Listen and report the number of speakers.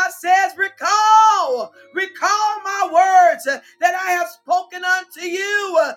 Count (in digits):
1